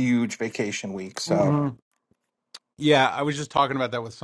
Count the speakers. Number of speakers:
2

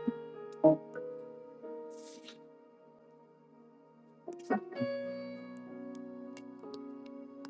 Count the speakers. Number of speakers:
0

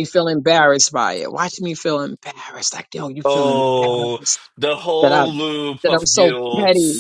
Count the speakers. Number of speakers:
2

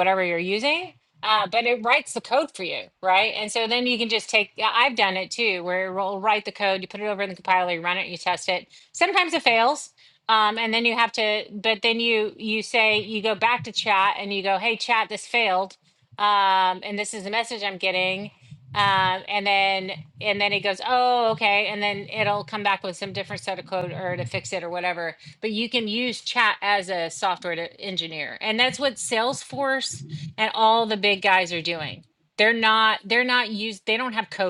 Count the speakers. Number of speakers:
1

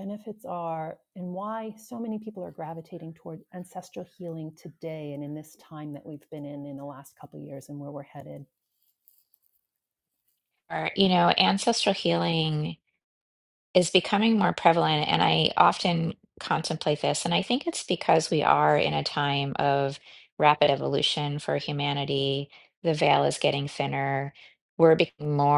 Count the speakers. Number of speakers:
2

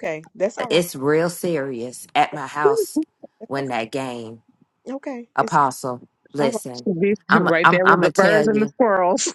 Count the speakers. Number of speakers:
3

